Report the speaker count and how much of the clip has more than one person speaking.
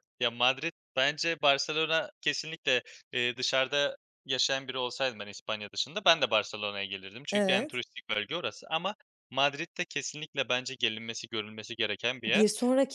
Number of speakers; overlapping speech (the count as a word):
two, about 4%